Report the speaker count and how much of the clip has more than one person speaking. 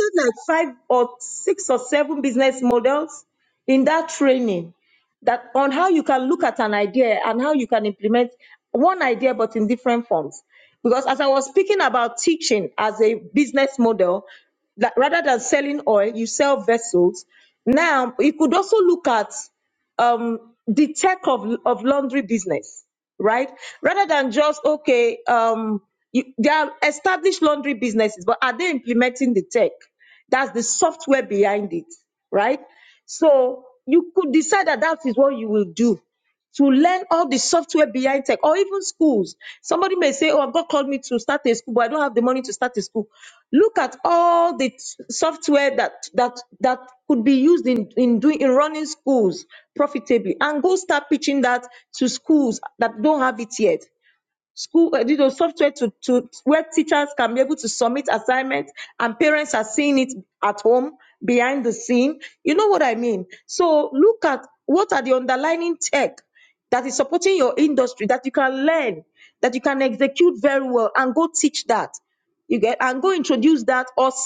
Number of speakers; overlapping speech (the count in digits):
1, no overlap